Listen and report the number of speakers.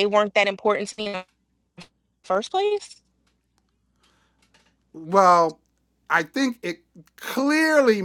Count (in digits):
2